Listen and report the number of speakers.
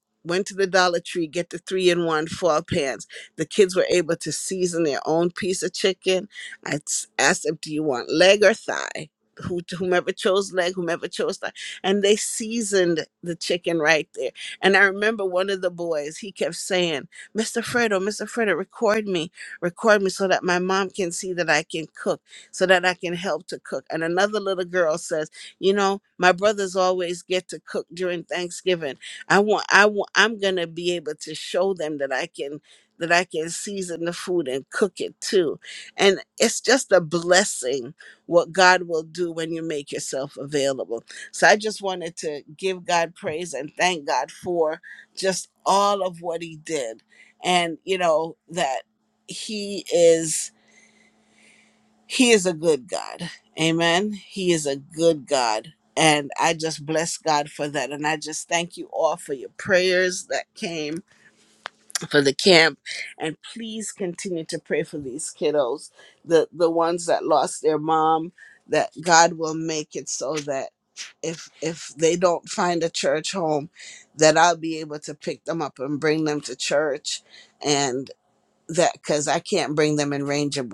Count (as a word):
one